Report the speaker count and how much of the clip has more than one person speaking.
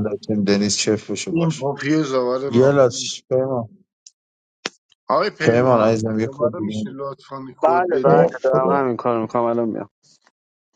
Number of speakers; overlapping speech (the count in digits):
3, about 32%